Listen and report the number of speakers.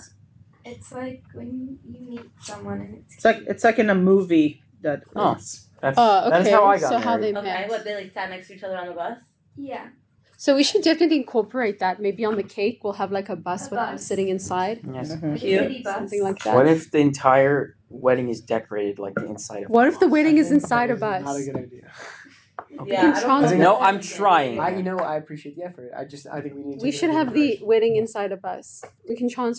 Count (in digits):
6